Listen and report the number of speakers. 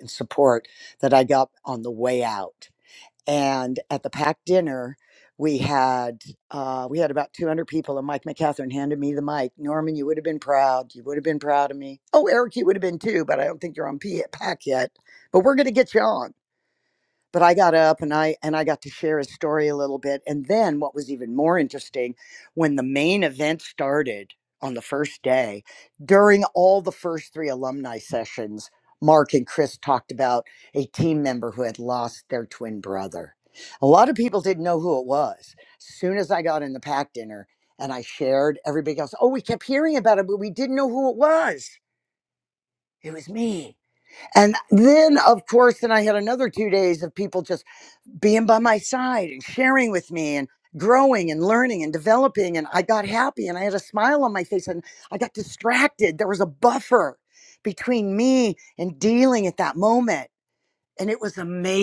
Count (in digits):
1